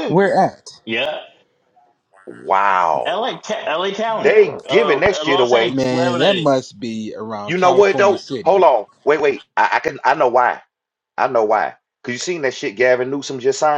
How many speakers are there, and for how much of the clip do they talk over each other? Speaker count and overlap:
3, about 26%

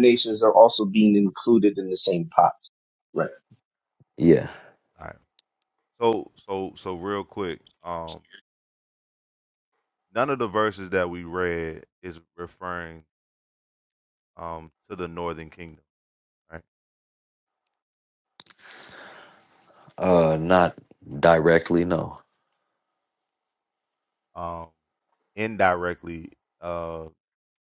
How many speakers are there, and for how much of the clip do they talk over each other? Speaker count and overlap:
3, no overlap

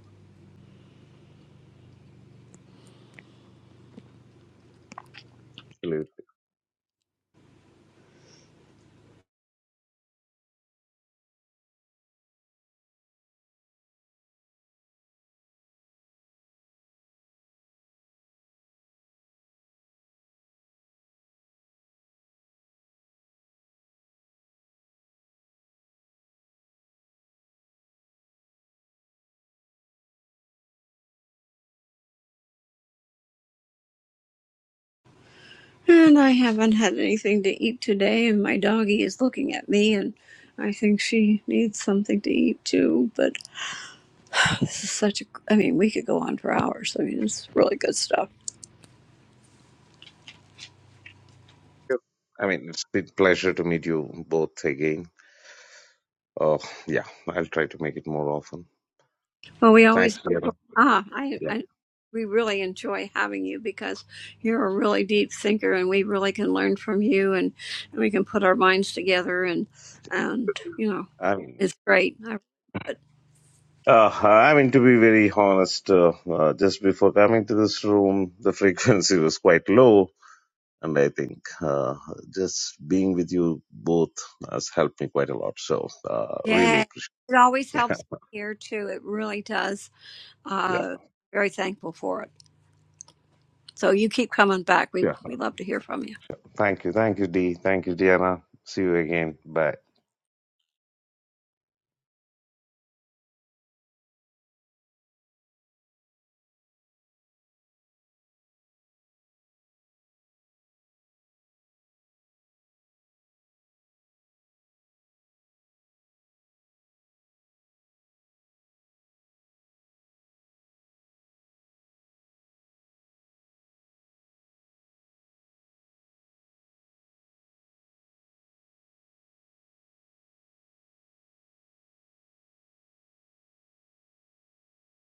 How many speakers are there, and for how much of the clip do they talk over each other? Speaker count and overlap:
2, about 1%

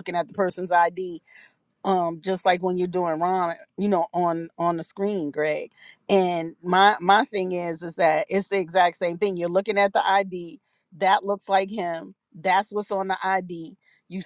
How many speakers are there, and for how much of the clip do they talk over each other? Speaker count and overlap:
1, no overlap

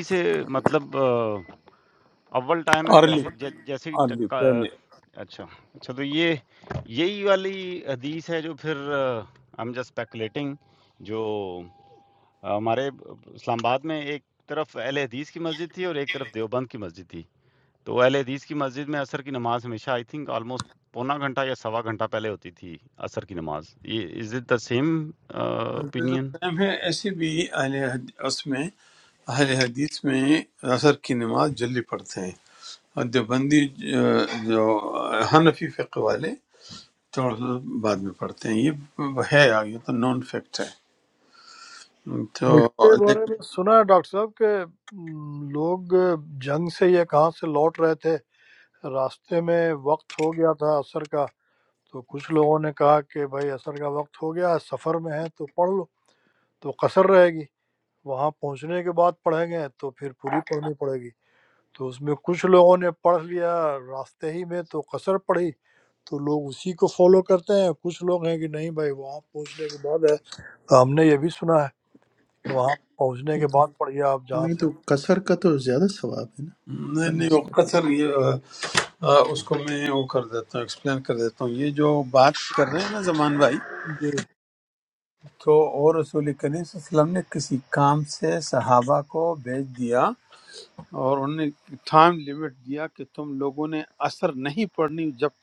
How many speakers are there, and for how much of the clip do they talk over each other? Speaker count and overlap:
4, about 3%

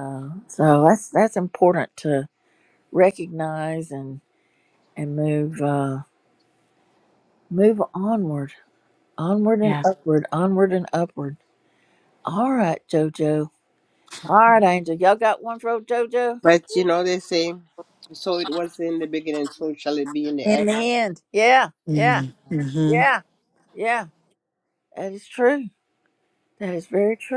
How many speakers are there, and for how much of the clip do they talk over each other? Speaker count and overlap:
3, about 3%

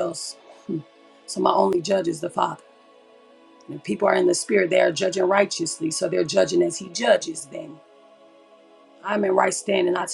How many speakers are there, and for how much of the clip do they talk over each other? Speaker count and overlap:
1, no overlap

